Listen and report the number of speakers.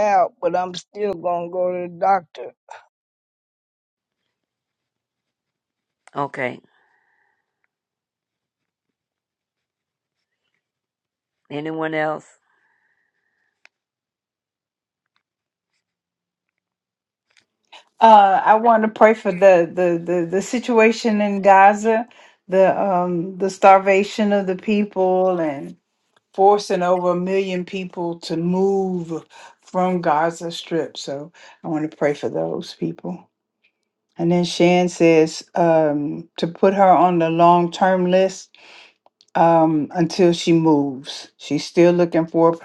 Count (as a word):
three